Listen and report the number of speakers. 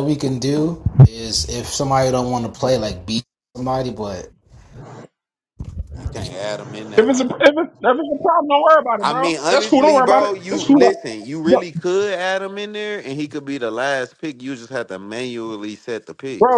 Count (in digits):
3